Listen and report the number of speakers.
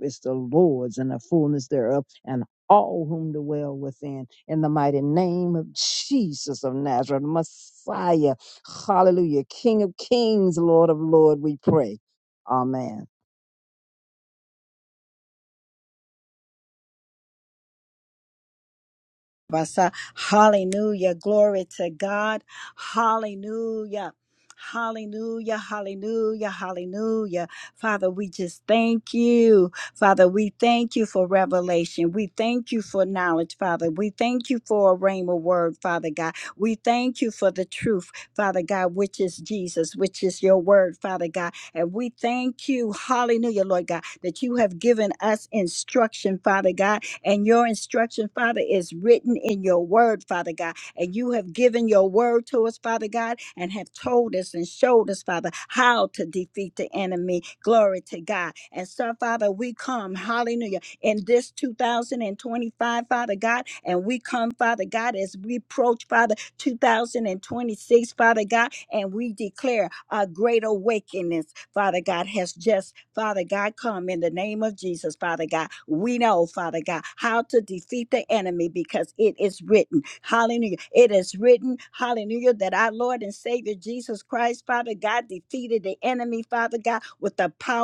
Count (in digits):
2